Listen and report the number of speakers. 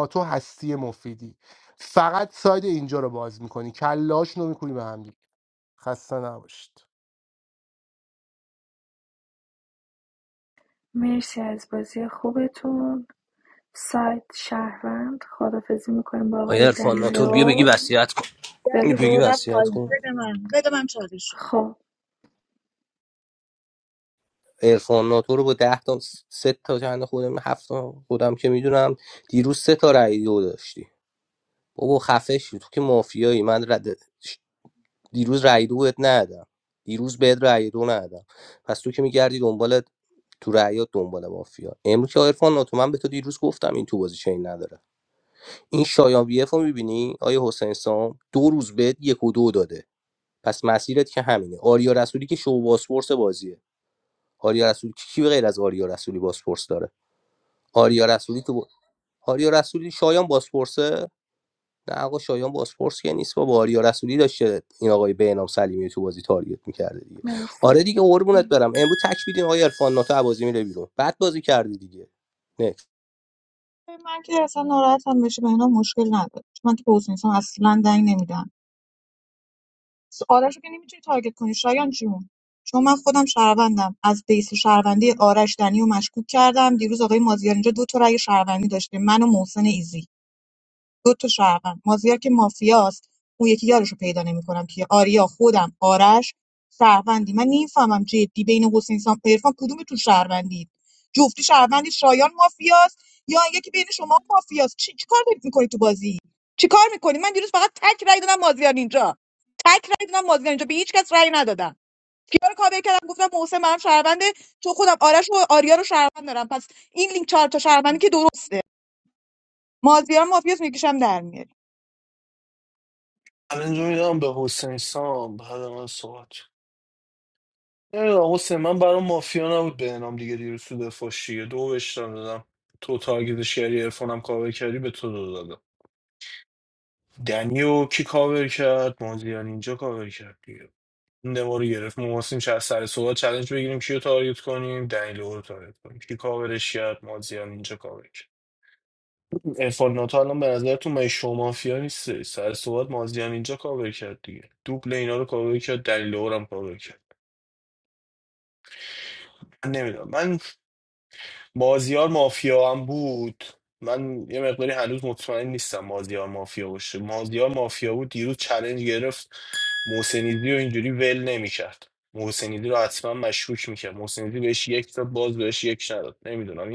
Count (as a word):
five